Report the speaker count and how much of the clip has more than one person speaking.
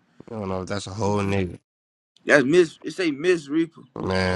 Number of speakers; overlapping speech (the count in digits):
2, no overlap